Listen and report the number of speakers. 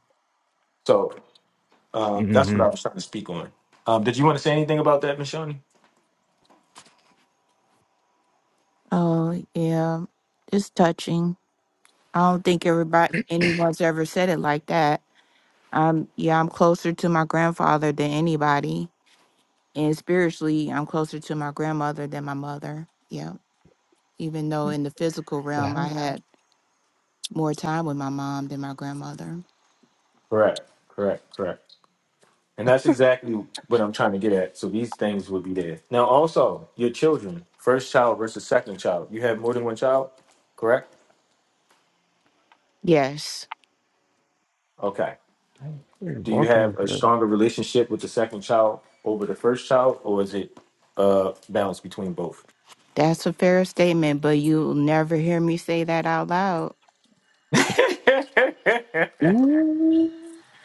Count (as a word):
three